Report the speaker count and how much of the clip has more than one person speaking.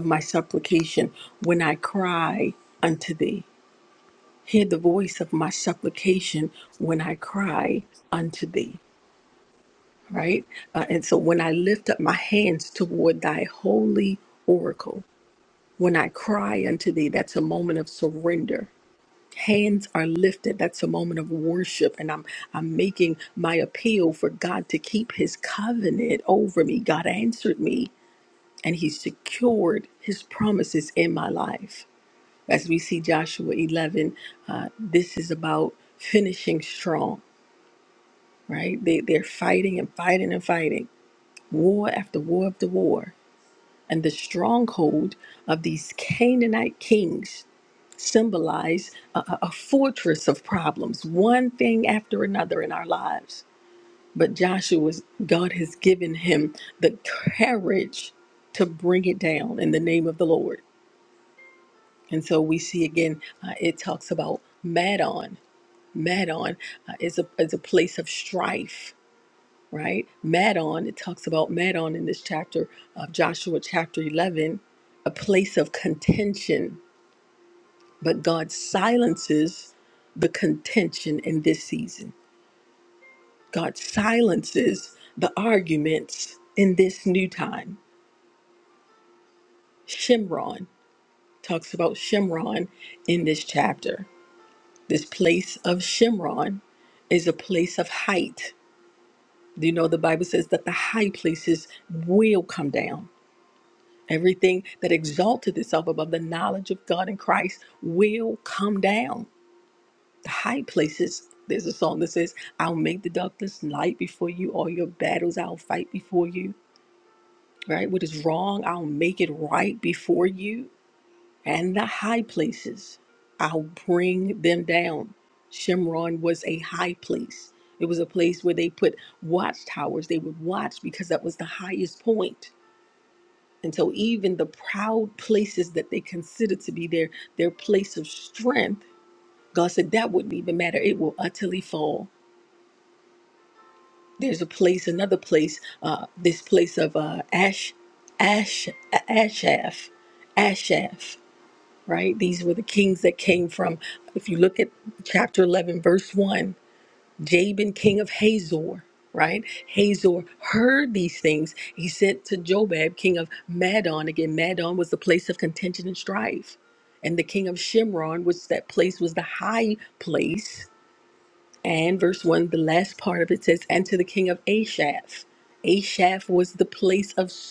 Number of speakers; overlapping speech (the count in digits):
1, no overlap